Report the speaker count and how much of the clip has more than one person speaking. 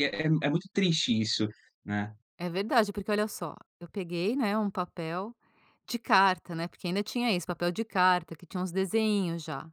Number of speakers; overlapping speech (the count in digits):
2, no overlap